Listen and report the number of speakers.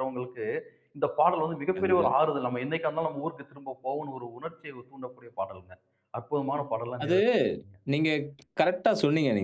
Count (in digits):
2